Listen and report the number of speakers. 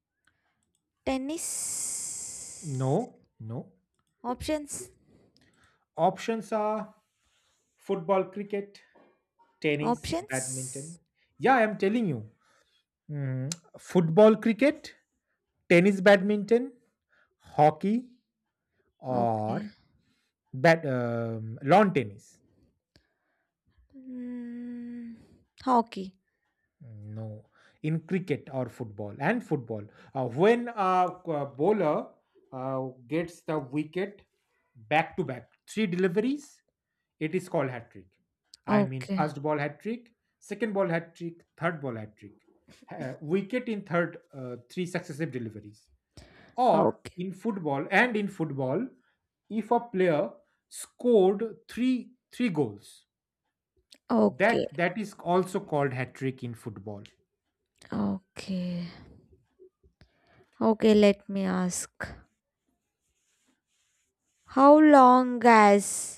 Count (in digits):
2